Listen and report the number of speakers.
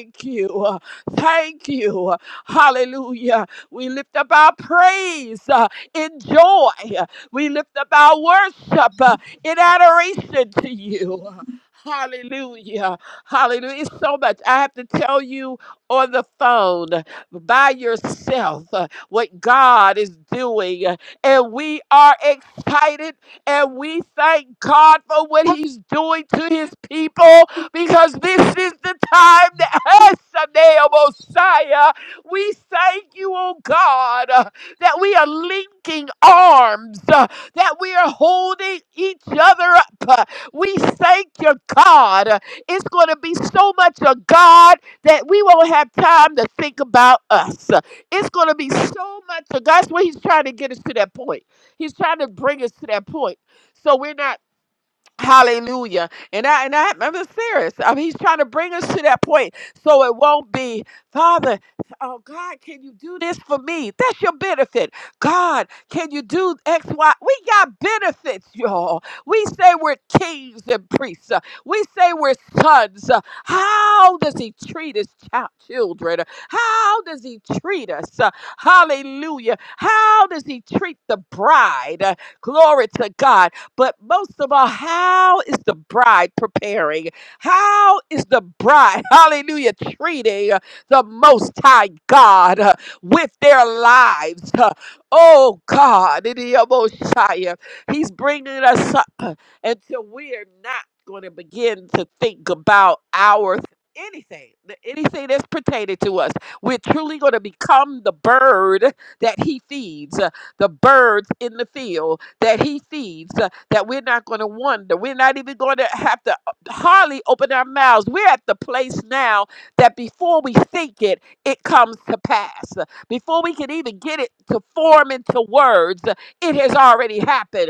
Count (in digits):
1